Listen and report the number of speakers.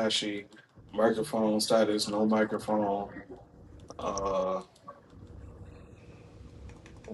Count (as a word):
one